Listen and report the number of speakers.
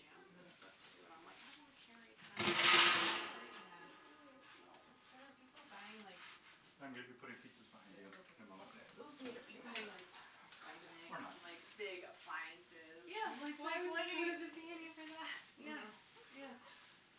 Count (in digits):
4